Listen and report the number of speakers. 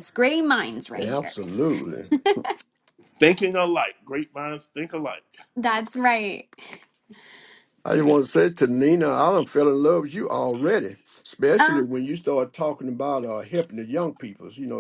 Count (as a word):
three